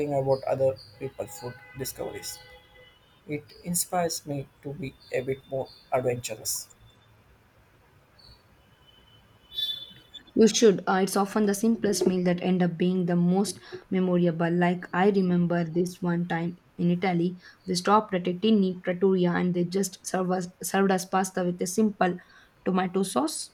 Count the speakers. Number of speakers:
two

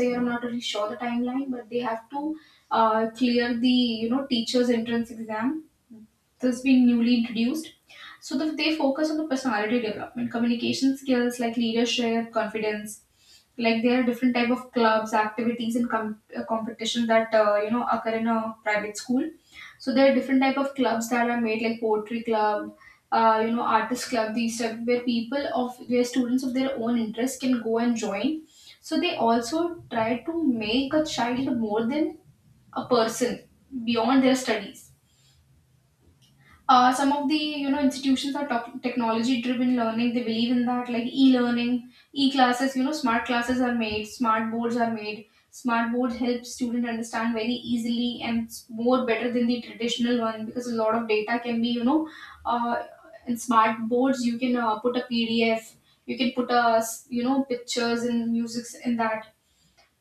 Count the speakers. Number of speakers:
one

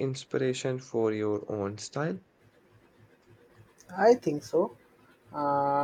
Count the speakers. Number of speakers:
two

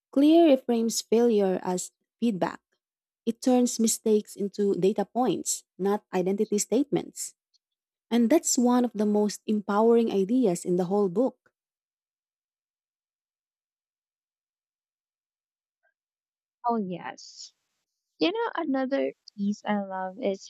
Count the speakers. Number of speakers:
two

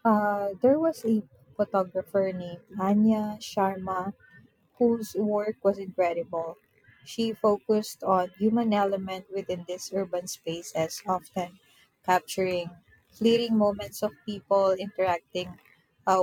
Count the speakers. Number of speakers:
one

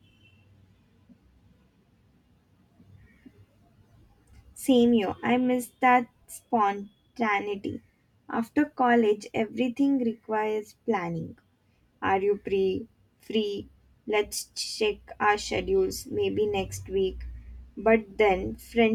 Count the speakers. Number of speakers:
one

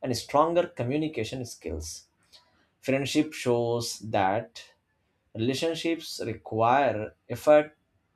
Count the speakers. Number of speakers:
one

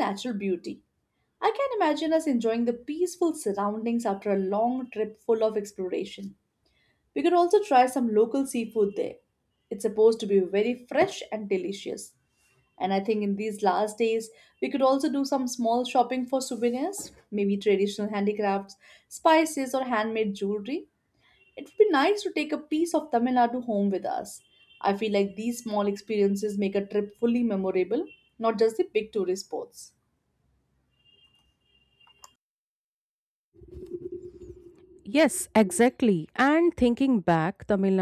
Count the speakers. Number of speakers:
two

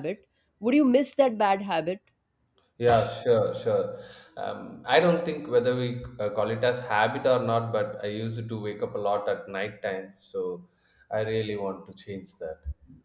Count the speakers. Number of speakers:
two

